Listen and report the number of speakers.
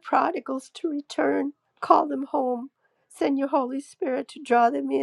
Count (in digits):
1